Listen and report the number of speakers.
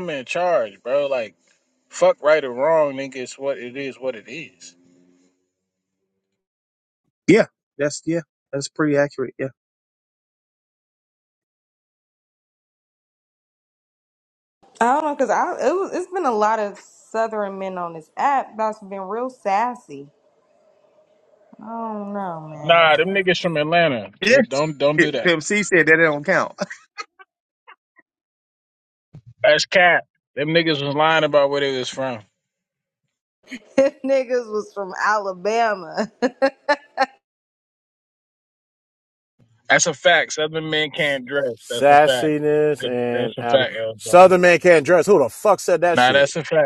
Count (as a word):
four